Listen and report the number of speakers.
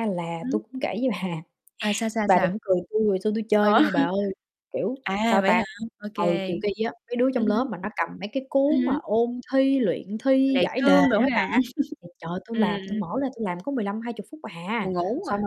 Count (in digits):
2